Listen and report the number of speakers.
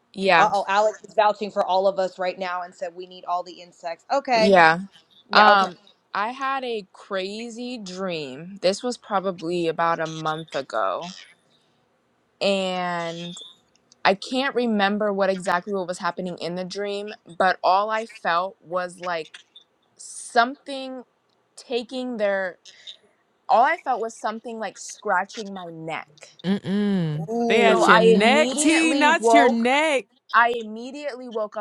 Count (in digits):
3